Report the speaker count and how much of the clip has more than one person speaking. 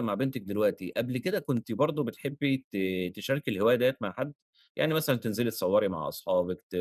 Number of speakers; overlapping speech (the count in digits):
1, no overlap